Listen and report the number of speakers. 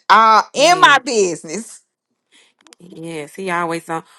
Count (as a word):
two